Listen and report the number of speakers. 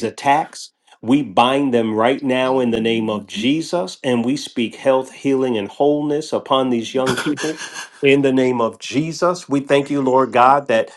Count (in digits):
1